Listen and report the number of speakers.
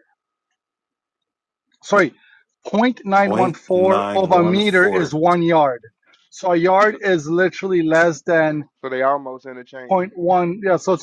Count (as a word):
three